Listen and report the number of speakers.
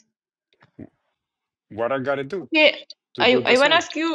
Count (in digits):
2